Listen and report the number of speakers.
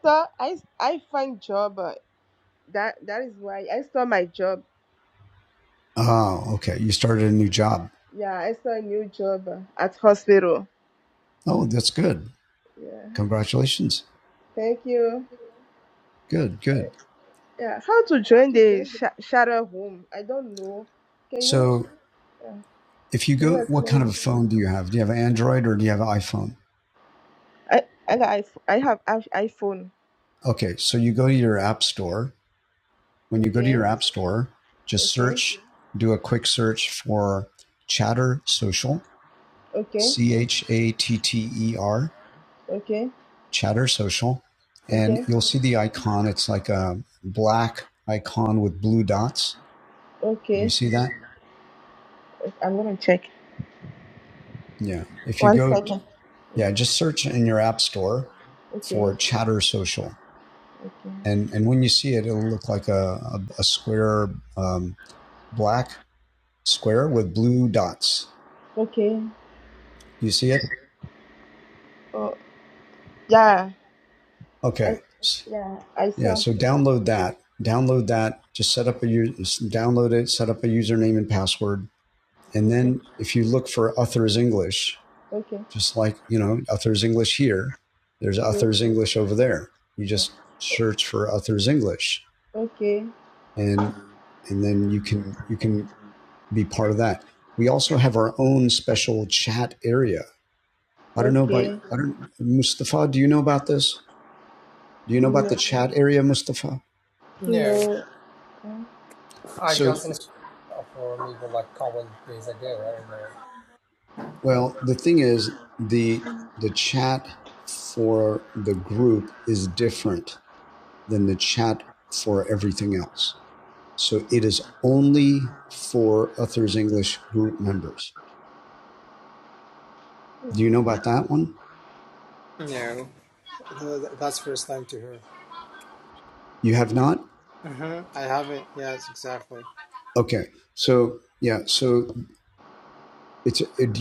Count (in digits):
3